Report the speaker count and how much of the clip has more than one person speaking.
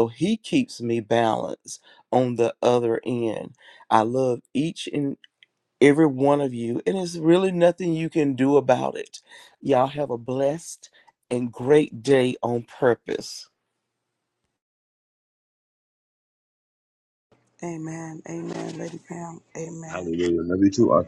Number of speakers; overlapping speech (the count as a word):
three, about 1%